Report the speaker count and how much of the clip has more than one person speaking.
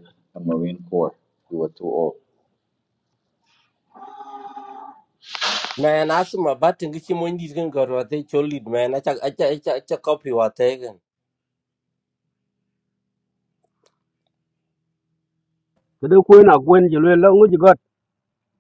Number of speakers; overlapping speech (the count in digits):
3, no overlap